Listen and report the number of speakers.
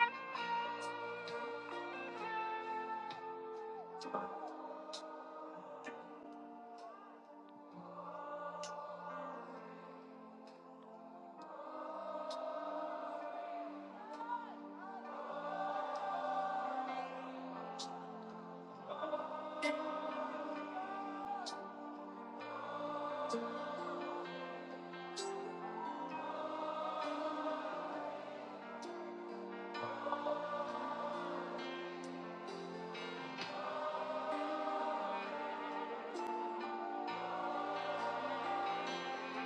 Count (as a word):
zero